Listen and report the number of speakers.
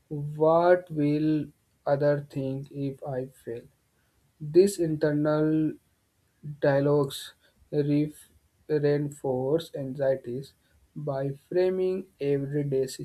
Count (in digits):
1